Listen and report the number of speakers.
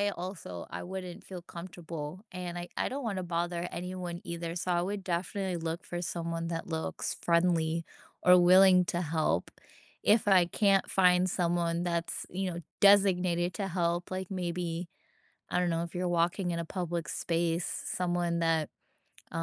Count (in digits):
1